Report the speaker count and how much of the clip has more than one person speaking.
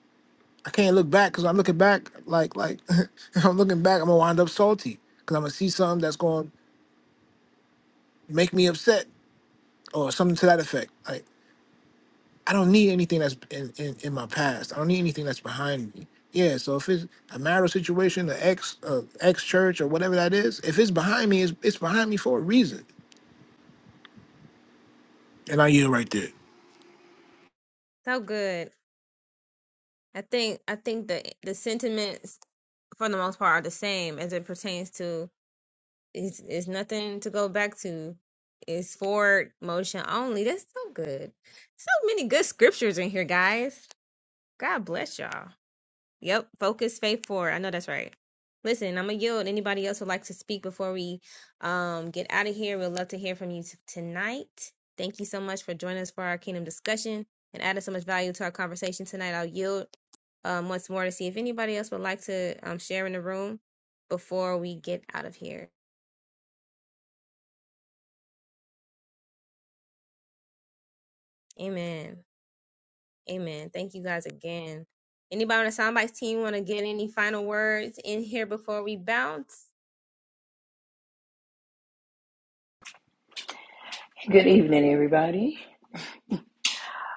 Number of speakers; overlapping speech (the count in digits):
3, no overlap